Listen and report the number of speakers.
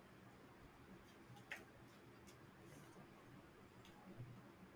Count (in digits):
0